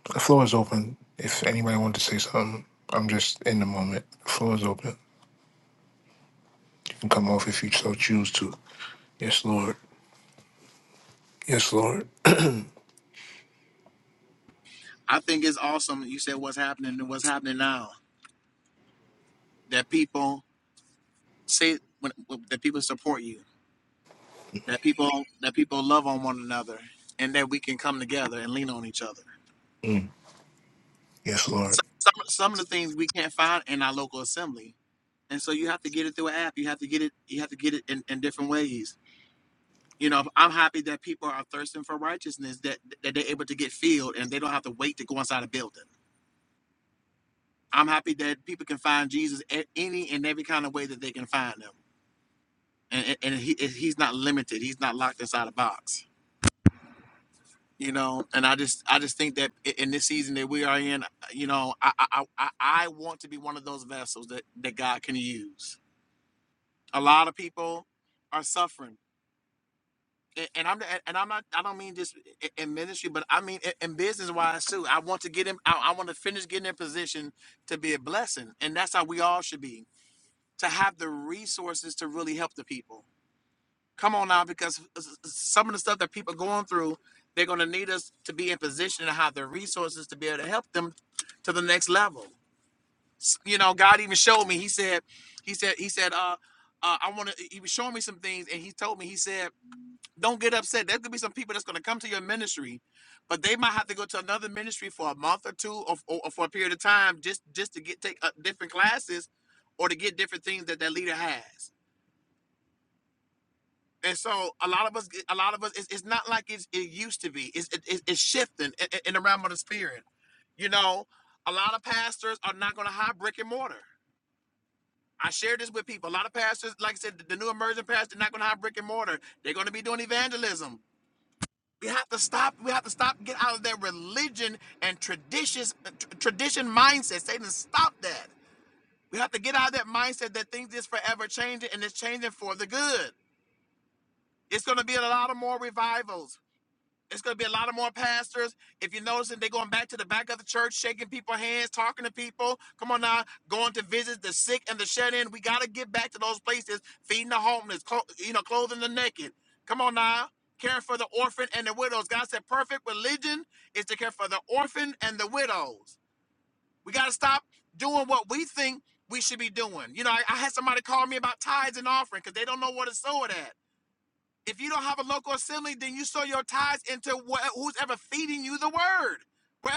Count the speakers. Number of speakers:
2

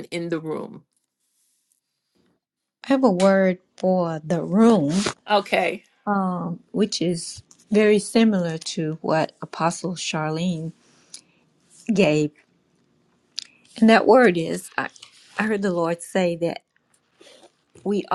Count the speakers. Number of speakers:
2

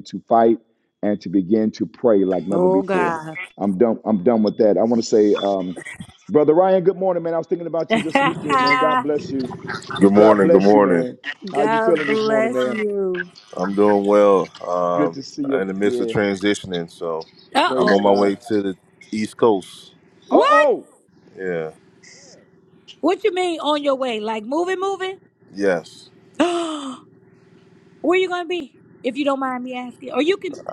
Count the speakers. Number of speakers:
3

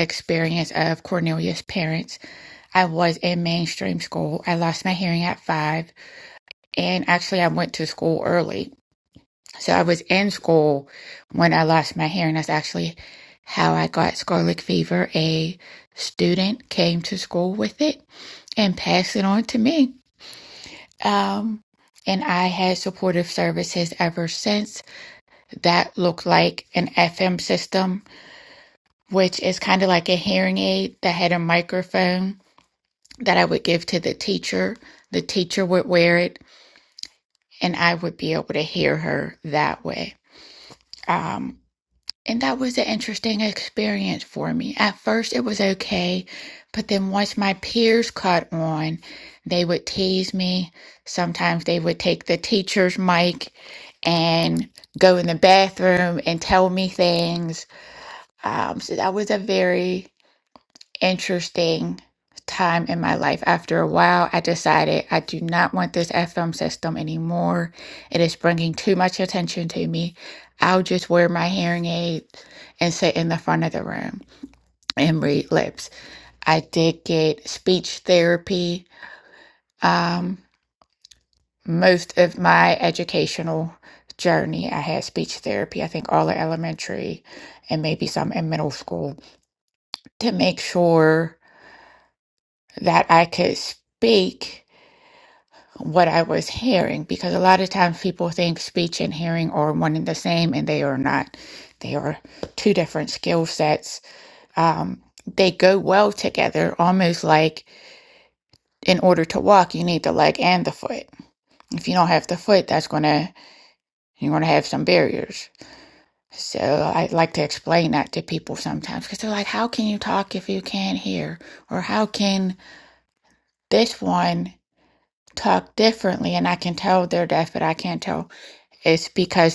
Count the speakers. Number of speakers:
1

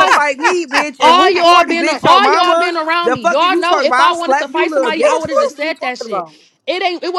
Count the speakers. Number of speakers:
2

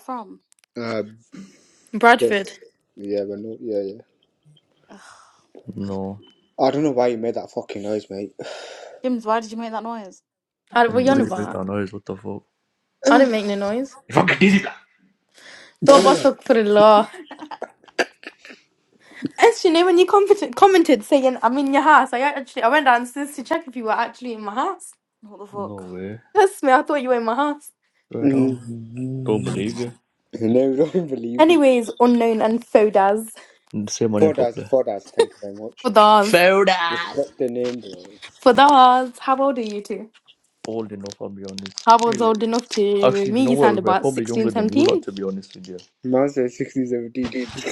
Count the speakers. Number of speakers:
4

